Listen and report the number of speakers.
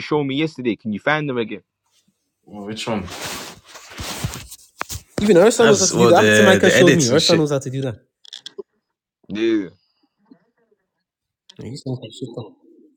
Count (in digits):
3